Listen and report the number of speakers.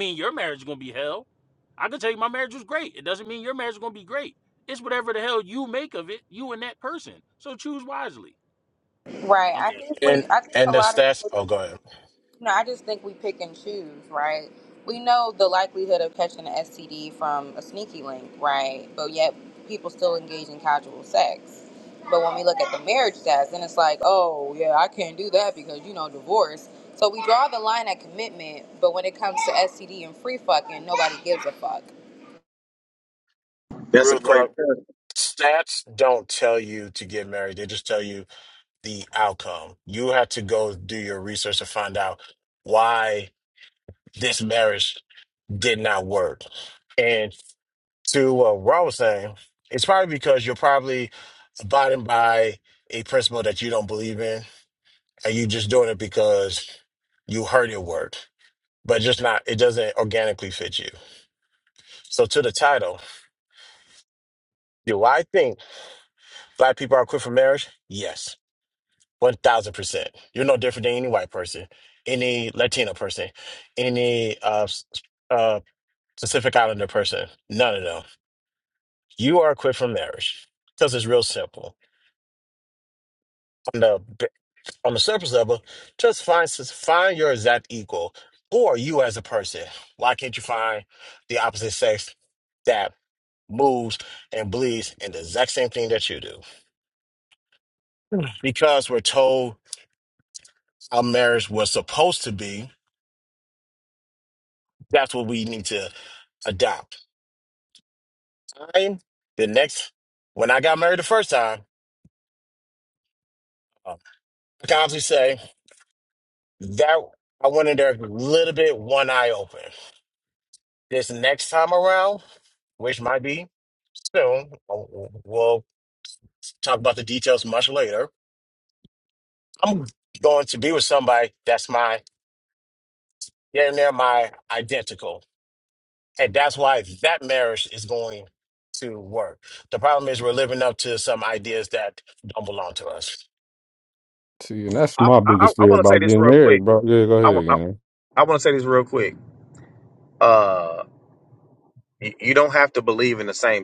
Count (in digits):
5